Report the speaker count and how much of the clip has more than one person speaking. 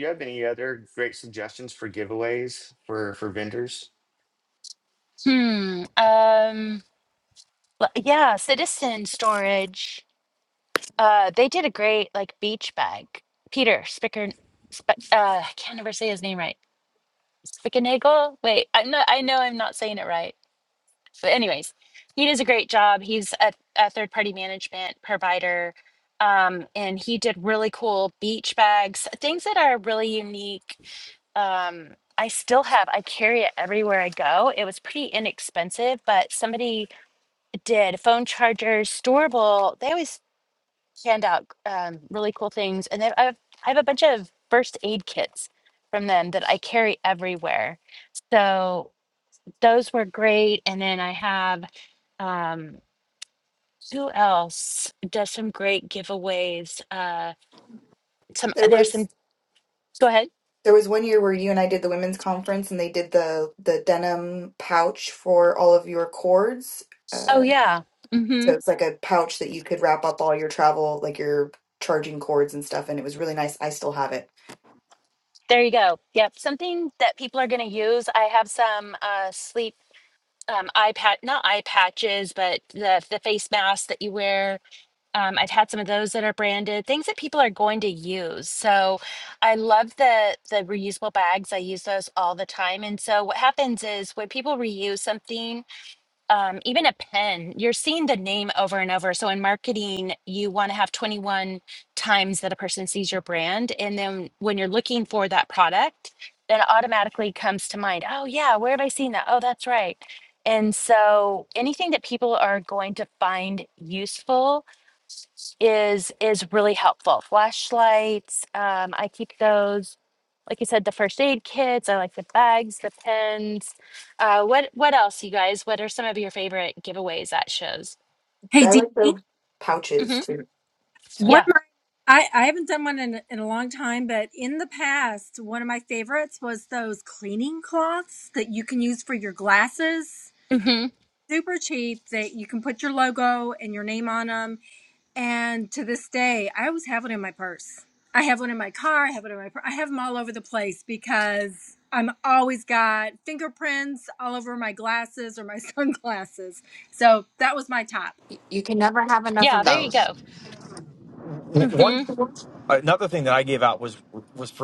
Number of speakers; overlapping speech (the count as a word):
six, about 1%